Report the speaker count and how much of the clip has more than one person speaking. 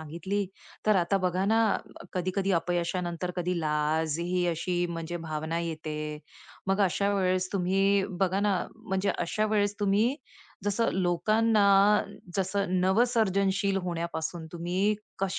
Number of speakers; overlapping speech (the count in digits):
1, no overlap